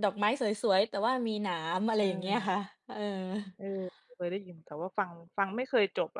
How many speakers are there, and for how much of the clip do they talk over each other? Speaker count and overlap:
2, about 7%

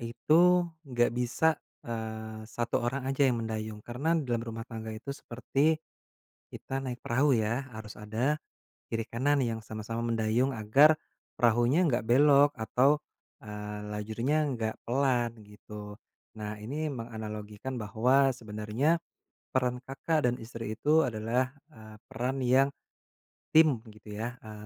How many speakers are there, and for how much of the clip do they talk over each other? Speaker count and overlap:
1, no overlap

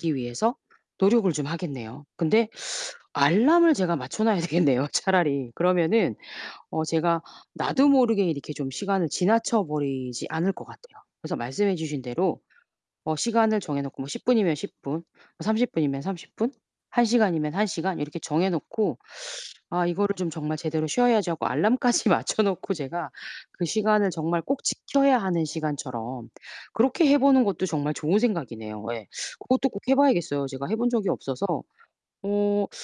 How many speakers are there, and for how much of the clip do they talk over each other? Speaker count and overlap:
1, no overlap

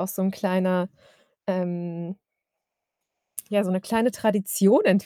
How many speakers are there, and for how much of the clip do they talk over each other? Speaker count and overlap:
1, no overlap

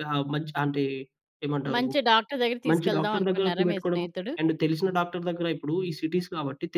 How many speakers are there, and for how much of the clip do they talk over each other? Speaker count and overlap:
2, about 28%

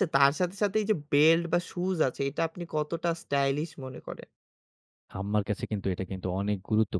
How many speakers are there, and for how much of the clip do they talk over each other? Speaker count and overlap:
2, no overlap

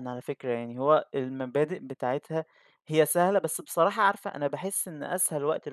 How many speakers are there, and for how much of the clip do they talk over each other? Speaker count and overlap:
1, no overlap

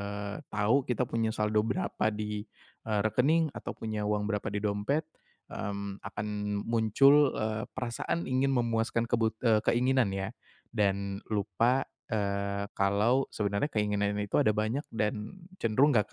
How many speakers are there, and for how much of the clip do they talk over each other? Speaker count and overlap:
1, no overlap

